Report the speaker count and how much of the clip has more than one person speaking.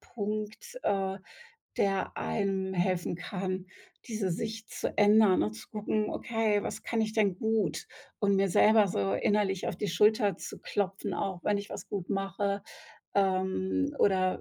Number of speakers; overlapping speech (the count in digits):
1, no overlap